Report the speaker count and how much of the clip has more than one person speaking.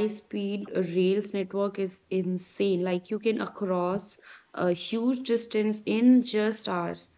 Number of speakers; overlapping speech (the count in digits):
1, no overlap